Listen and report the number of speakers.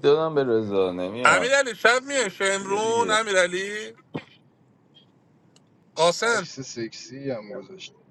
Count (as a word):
three